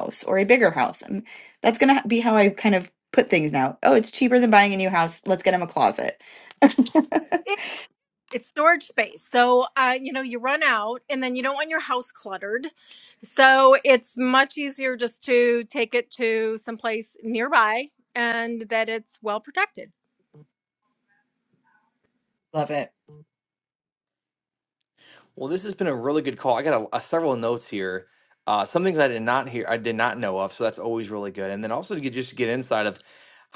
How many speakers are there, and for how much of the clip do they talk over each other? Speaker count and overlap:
3, no overlap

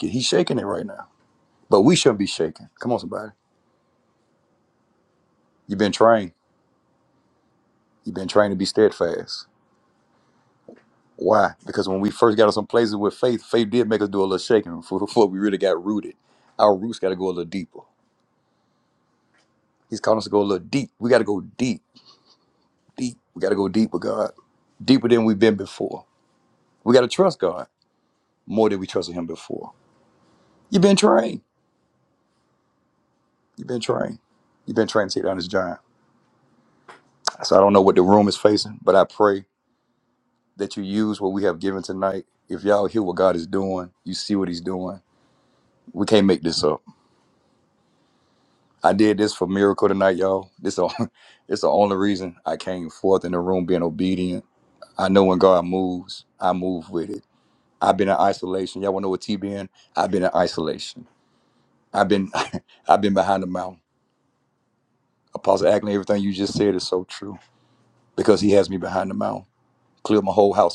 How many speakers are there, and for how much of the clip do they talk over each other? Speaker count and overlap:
1, no overlap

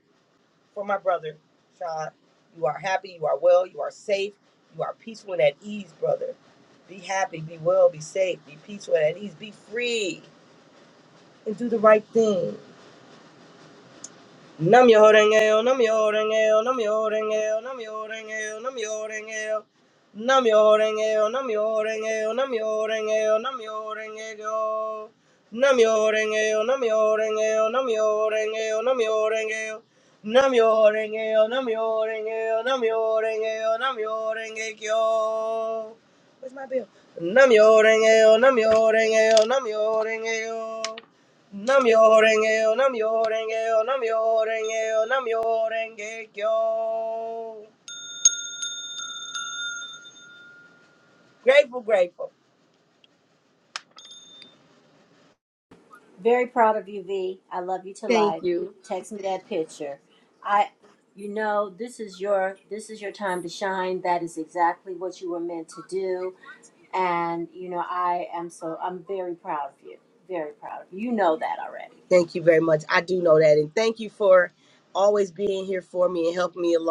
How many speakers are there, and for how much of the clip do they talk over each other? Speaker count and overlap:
2, under 1%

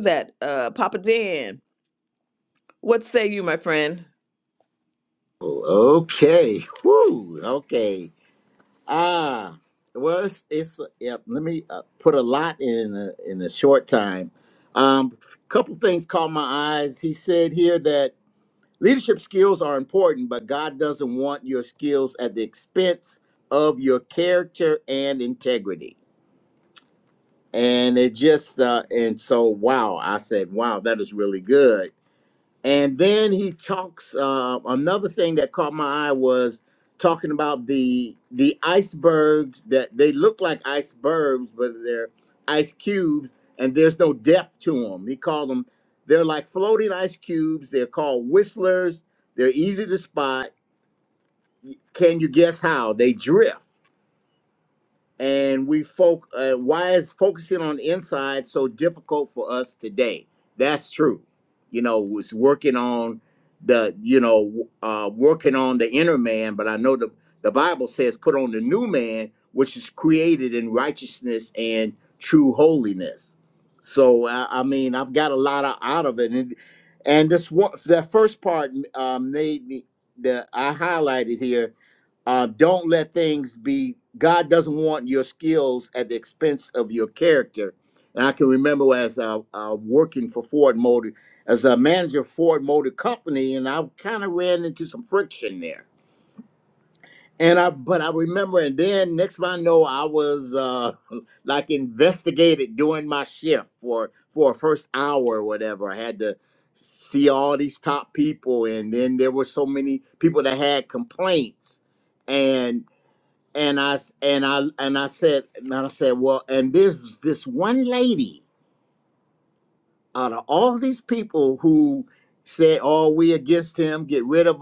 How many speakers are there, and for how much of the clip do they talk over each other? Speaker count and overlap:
2, no overlap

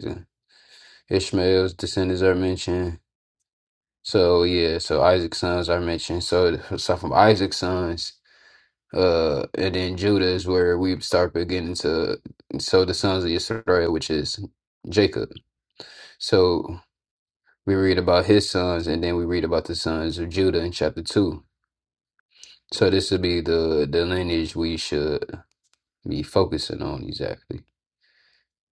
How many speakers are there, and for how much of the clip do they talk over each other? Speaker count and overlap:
1, no overlap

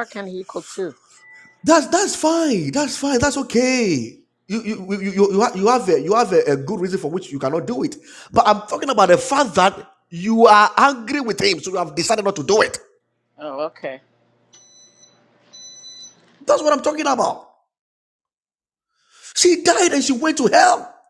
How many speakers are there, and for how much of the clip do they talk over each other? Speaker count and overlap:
2, no overlap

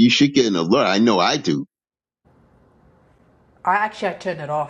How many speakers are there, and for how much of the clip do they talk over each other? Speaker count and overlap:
2, no overlap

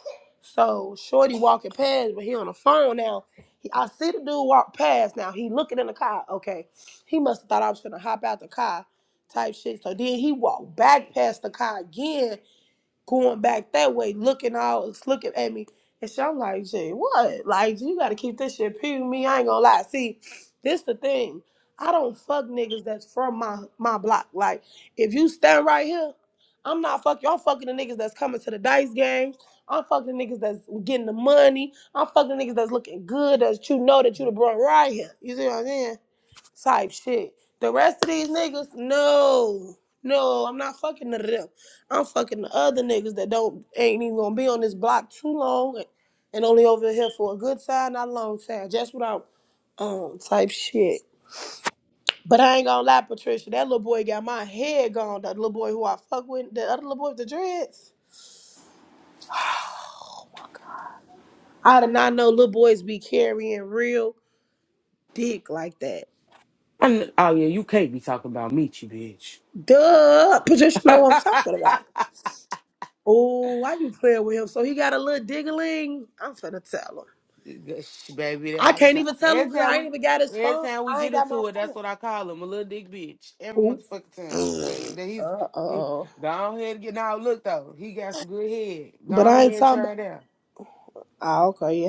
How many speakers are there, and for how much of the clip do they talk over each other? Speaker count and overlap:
2, about 4%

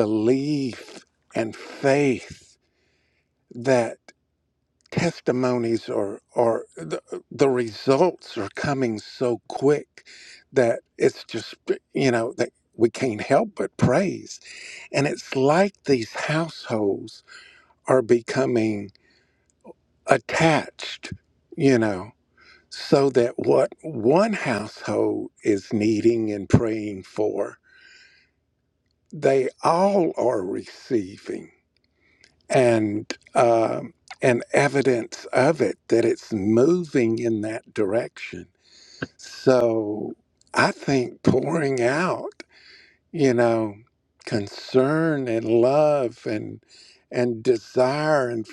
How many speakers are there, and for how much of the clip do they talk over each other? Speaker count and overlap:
1, no overlap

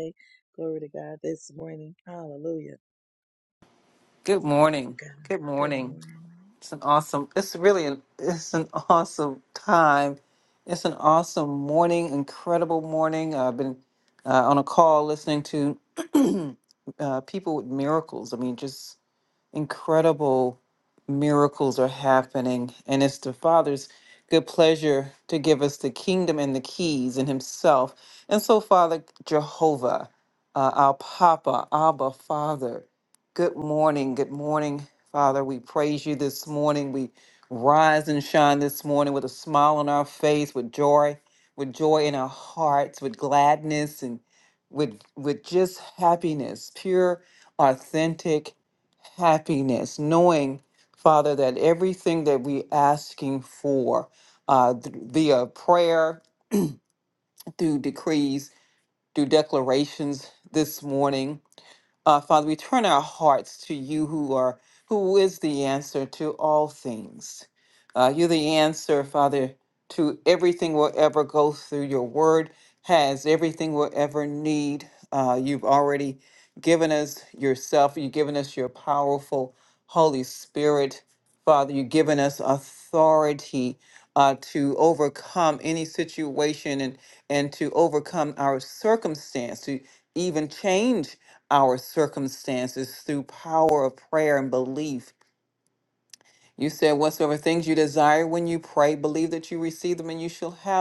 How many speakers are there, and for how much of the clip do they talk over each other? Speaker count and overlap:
2, about 1%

